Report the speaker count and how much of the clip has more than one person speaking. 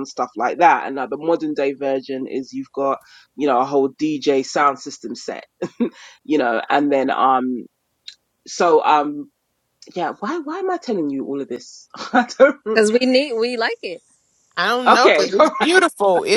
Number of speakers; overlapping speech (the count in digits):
3, about 6%